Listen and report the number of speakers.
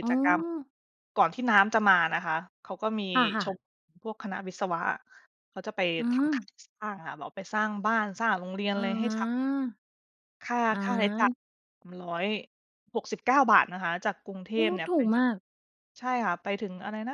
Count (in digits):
2